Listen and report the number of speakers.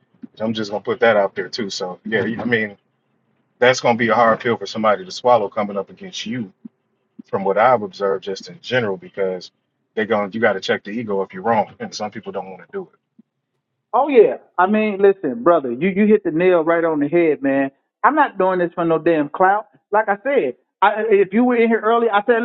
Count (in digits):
2